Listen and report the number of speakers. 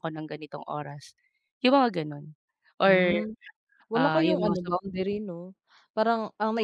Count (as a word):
two